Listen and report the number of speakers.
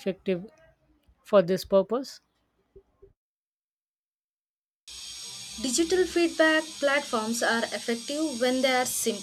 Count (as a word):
two